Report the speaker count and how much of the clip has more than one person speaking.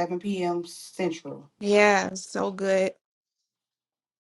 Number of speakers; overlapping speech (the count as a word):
two, no overlap